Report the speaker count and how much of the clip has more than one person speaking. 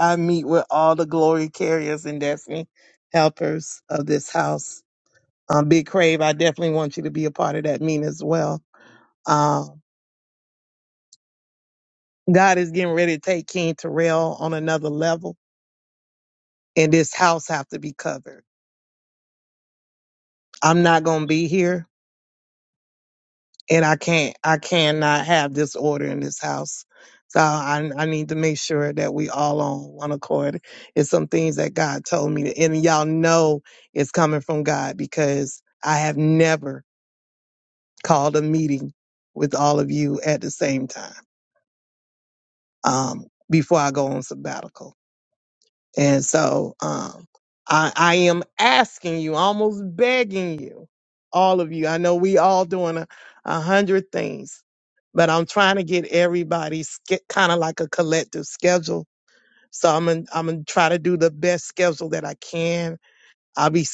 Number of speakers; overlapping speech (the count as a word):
one, no overlap